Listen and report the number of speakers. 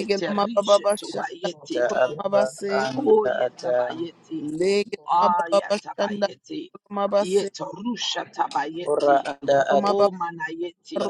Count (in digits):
3